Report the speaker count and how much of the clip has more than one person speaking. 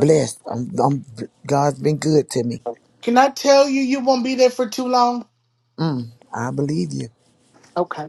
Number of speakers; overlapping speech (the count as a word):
two, under 1%